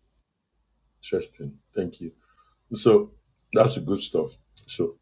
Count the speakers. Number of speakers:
1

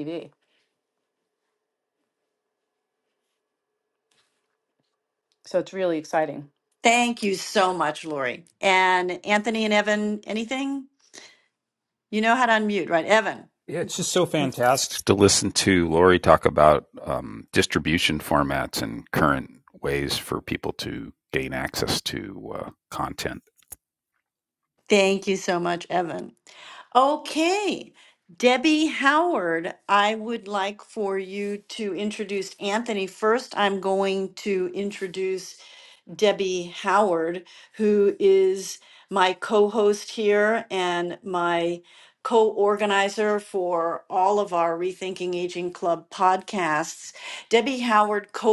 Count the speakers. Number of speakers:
3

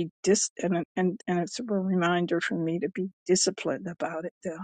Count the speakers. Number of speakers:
1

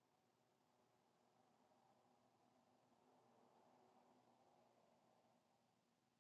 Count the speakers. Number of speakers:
0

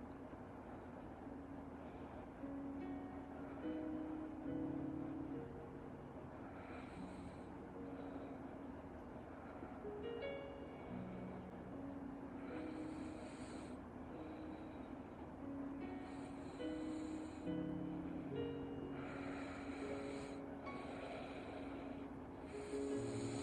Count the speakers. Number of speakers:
0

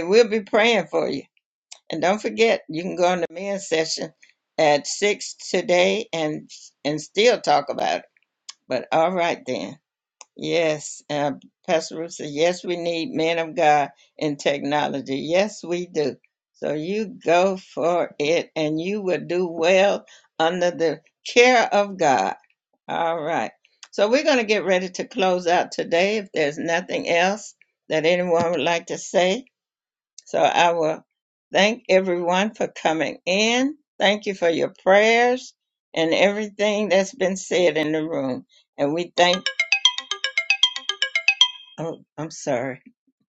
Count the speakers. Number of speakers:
1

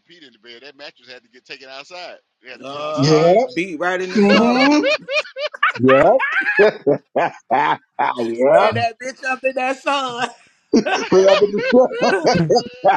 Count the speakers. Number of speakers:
3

